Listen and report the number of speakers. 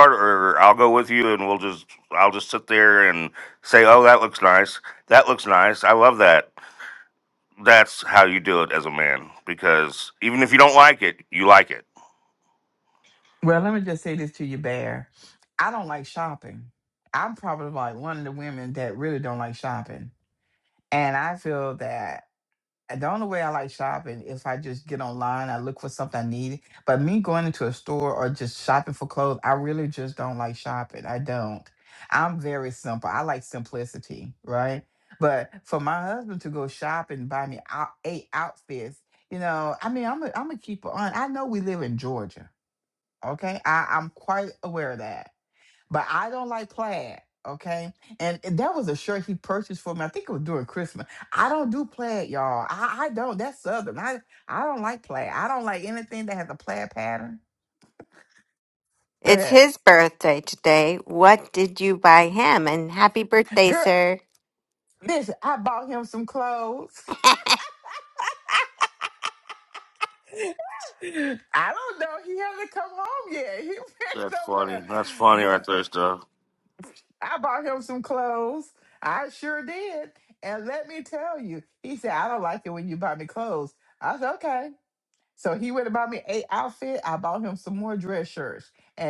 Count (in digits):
3